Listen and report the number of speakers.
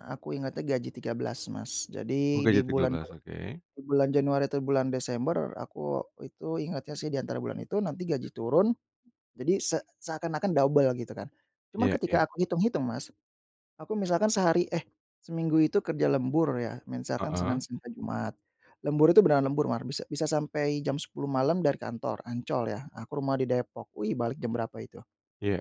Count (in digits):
2